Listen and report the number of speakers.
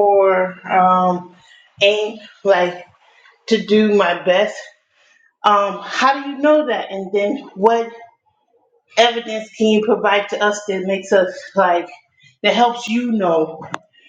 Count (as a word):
one